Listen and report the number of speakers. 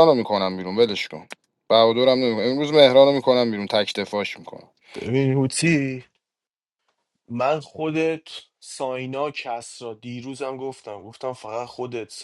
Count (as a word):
two